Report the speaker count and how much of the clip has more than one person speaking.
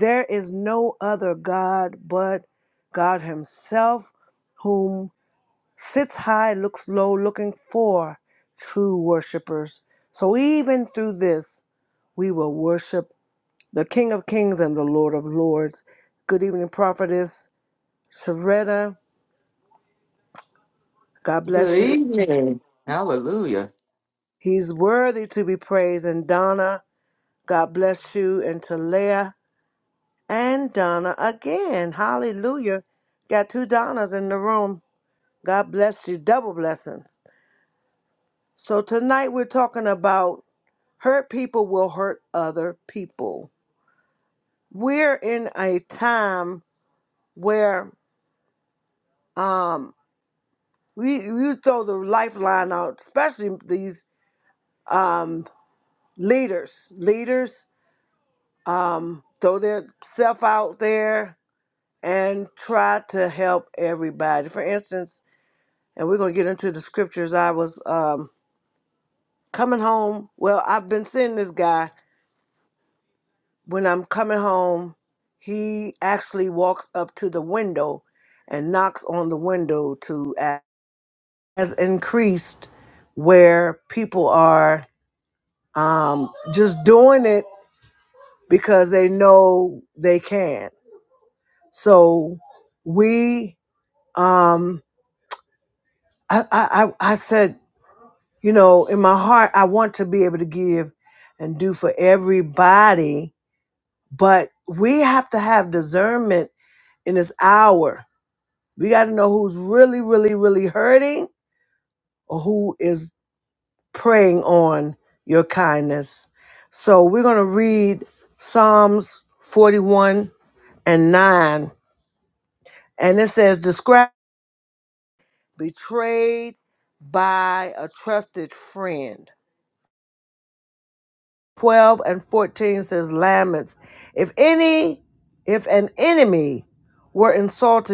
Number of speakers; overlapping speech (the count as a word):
two, under 1%